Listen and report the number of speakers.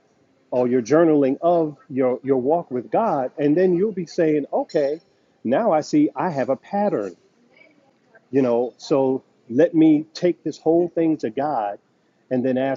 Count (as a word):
one